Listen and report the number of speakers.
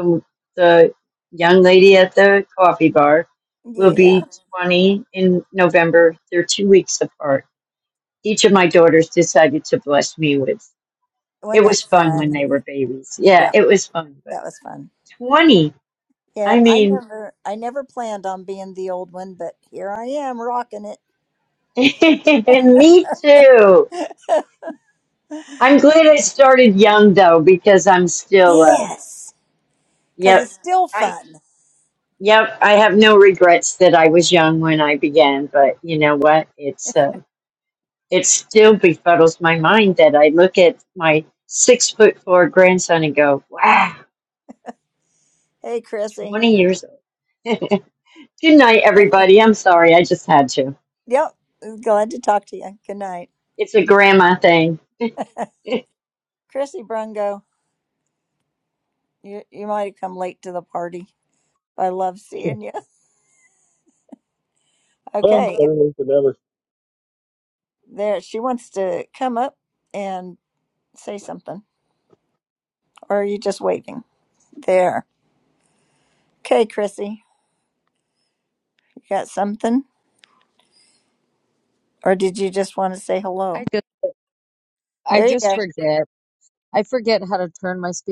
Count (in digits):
4